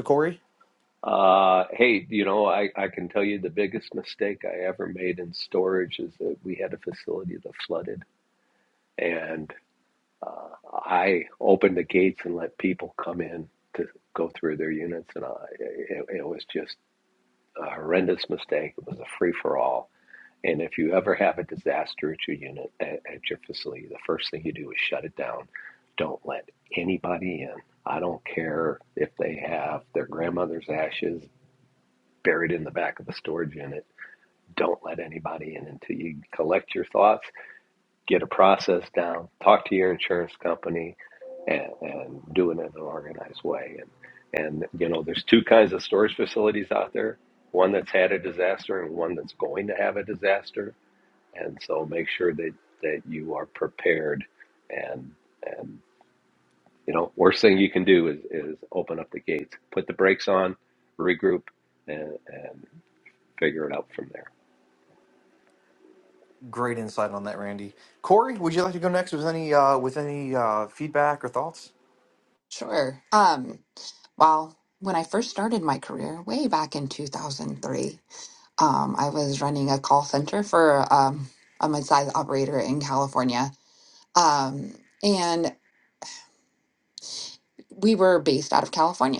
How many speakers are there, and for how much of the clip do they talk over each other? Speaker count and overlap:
3, no overlap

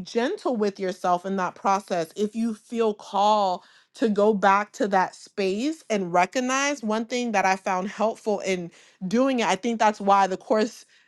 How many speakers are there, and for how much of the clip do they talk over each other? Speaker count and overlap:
1, no overlap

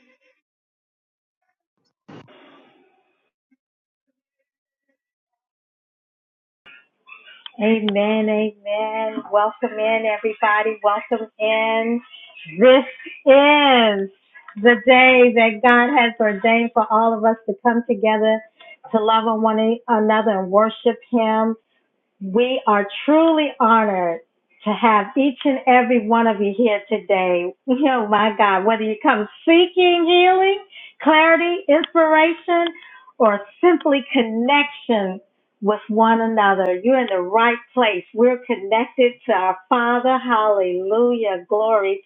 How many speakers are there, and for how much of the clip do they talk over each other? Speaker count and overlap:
1, no overlap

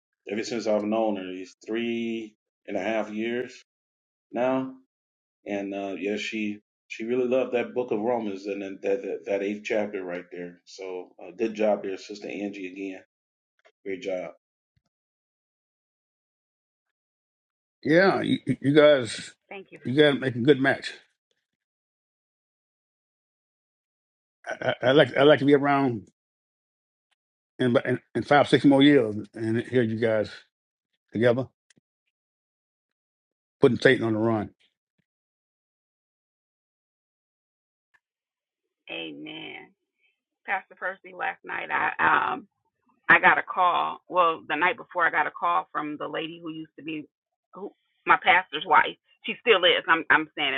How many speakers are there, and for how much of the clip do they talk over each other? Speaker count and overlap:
3, no overlap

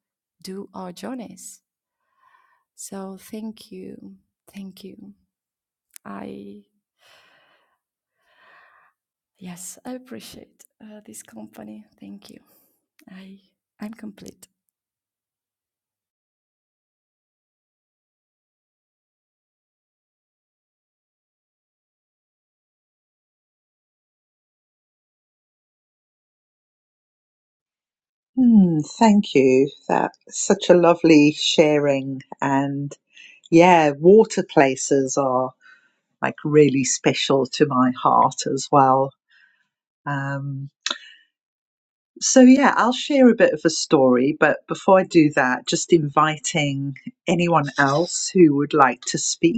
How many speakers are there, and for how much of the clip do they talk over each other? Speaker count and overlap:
2, no overlap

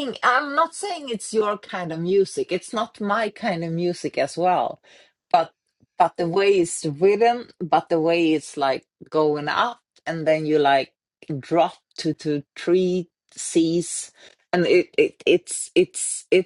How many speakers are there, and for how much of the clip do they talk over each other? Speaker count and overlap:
1, no overlap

